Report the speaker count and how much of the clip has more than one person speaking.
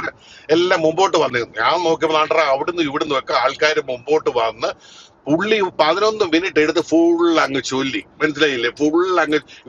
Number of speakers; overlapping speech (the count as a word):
one, no overlap